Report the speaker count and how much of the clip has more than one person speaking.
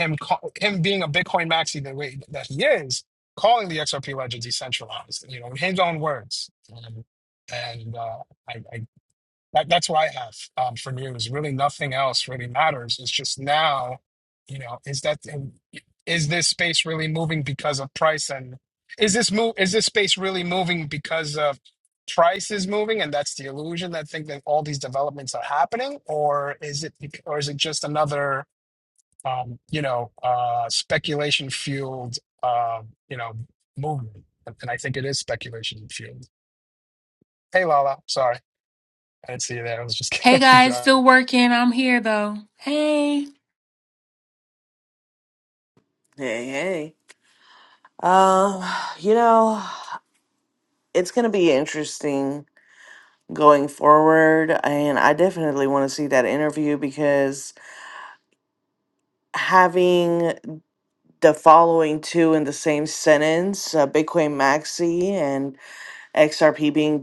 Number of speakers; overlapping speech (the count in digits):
3, about 1%